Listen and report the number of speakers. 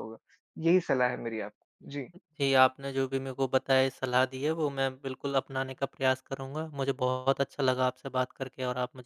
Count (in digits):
2